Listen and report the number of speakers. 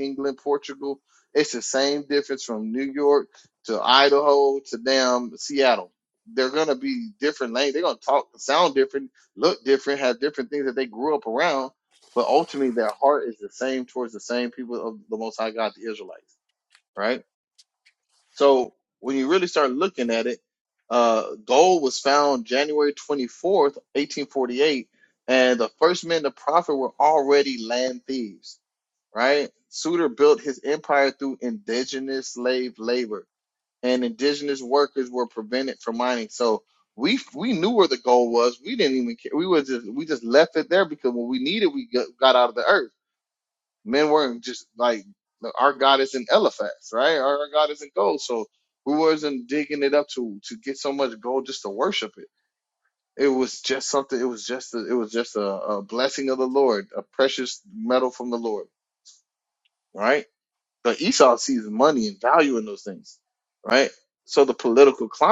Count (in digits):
1